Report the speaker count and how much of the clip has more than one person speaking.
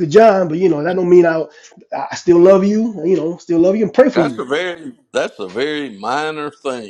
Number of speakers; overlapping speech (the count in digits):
2, about 3%